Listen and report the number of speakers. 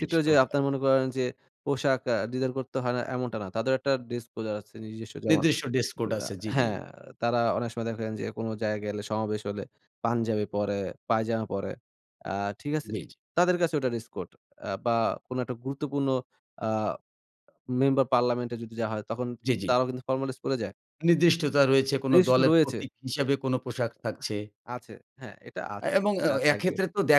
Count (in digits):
2